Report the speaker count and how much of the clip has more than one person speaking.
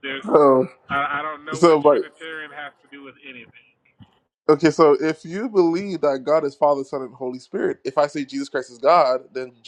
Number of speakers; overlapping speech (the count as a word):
two, about 6%